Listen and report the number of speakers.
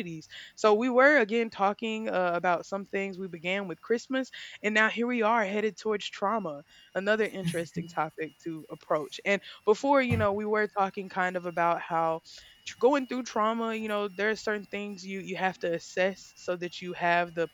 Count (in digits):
1